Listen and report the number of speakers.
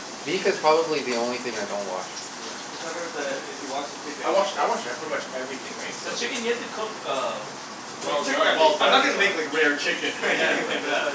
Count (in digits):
4